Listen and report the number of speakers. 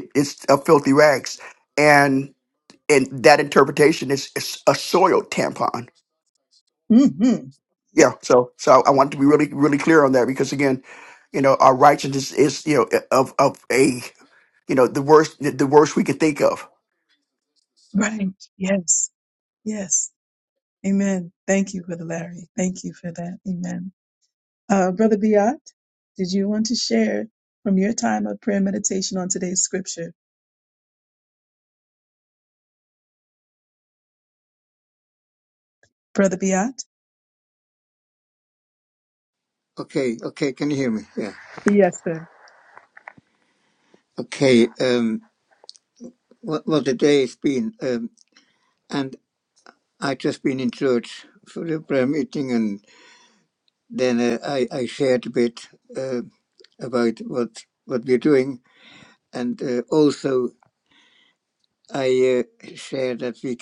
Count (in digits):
3